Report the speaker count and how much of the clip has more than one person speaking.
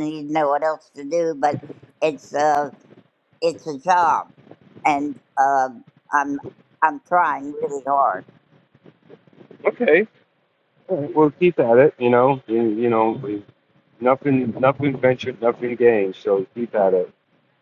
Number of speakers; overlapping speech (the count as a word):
two, no overlap